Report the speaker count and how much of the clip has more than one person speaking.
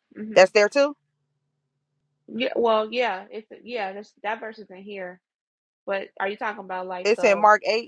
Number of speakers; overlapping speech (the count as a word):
two, about 7%